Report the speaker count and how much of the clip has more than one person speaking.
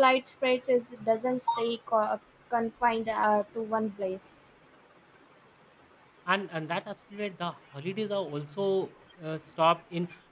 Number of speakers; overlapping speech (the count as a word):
two, no overlap